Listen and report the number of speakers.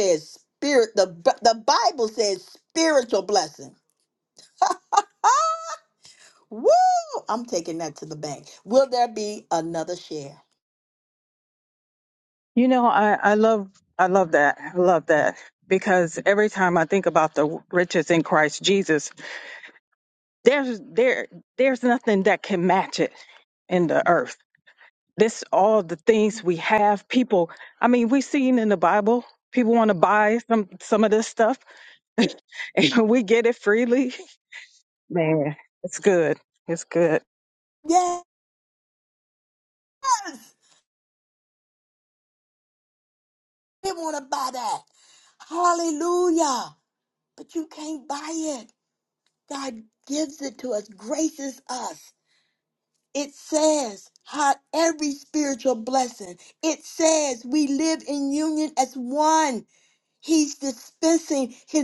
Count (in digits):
2